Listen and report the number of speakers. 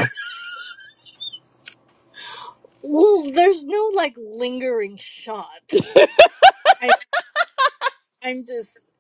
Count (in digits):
1